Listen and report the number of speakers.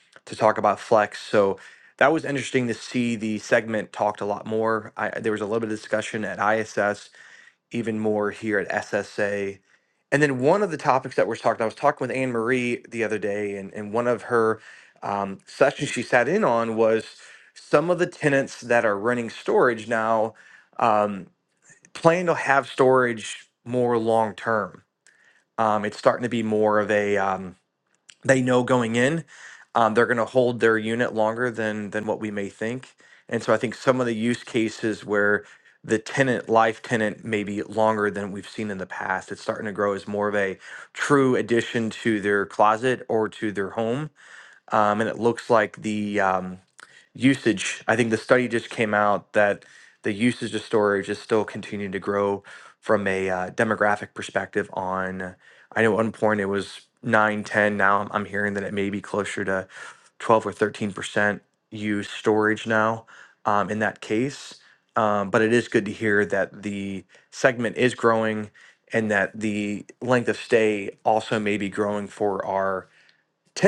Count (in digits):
1